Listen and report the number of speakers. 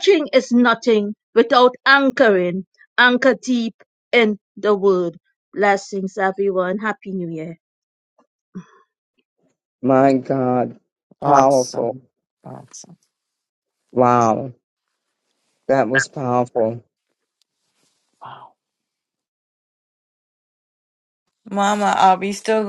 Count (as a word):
three